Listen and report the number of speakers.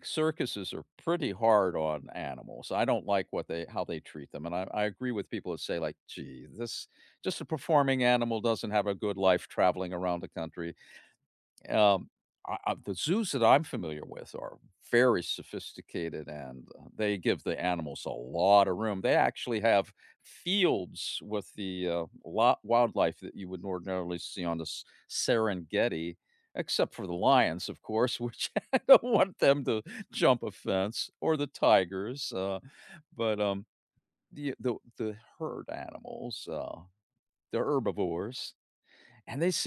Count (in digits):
1